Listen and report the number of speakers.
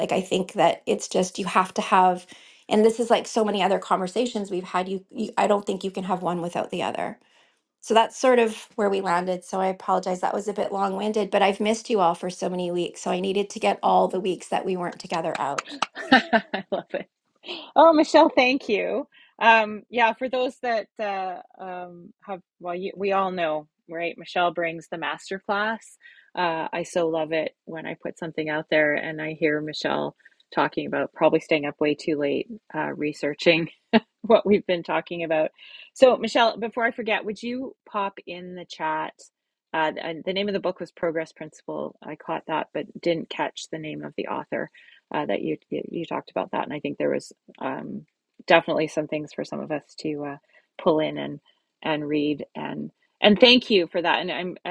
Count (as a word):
two